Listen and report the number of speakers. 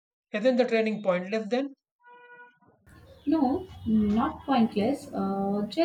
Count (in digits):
2